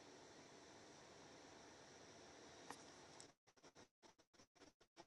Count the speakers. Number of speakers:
0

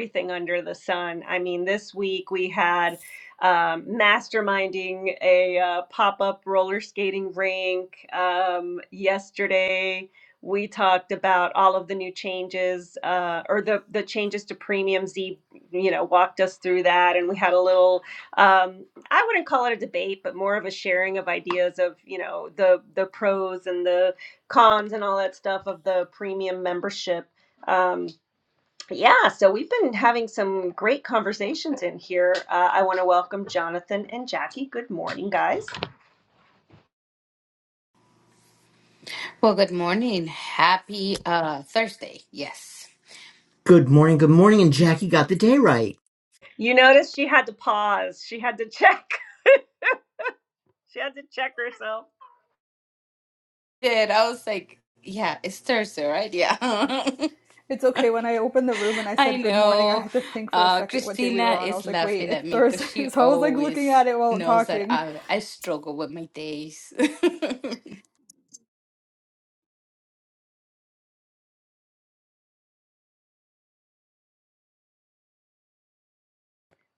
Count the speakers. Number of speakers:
4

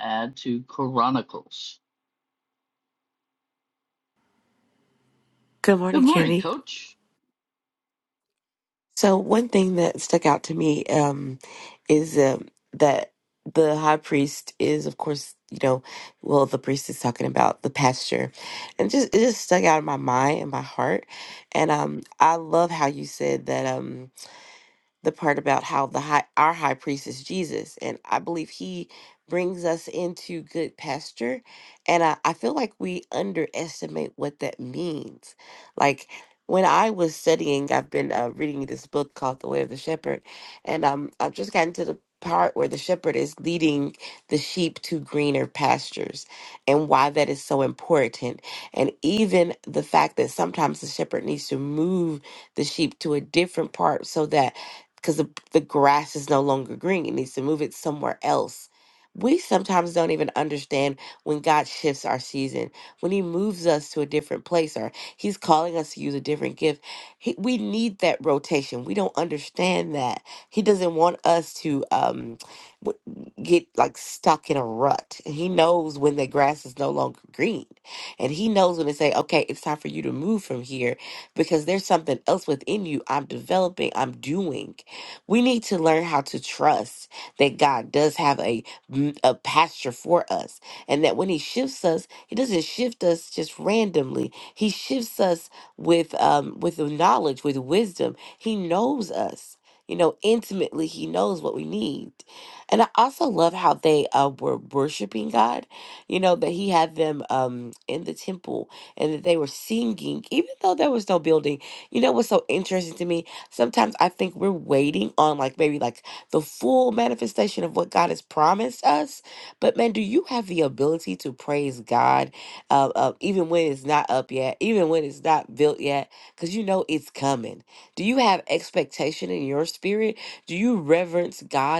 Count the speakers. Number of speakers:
2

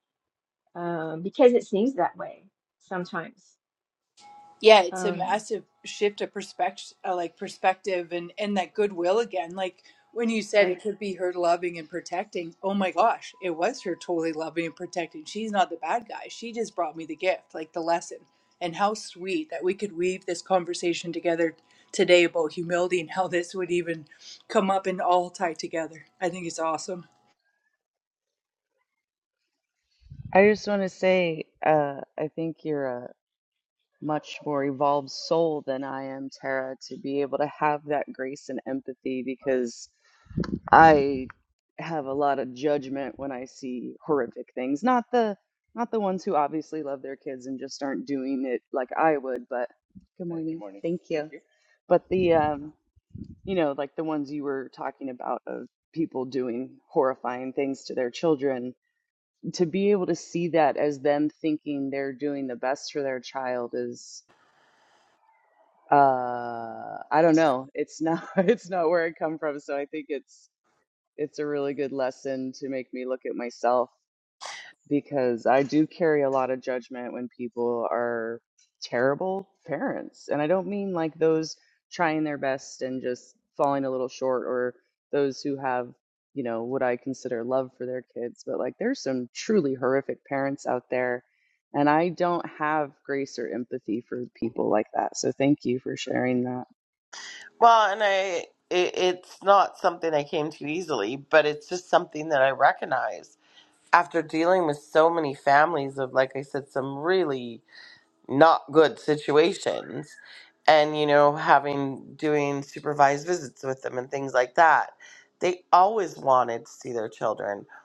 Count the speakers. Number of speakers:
4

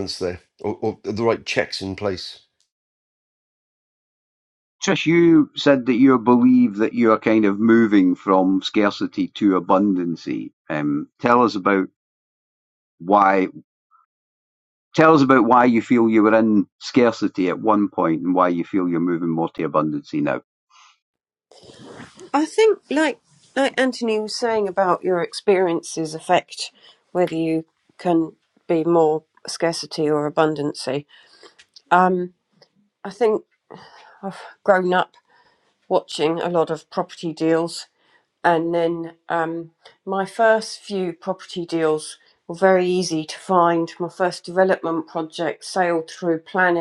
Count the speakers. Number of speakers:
3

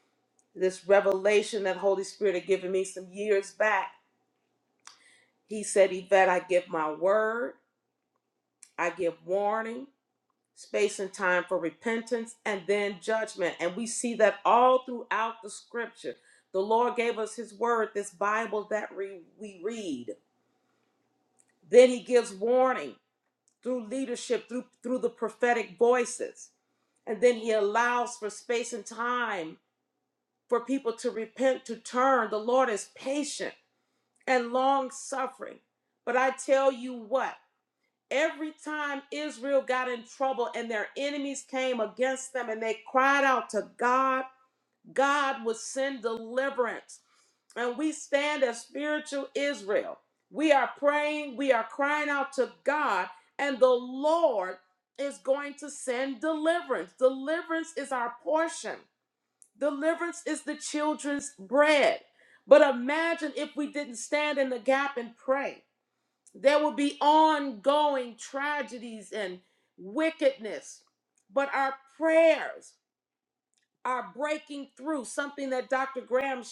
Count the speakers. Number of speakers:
1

